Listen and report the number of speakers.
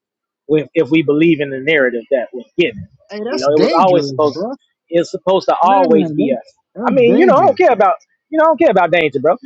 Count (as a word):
two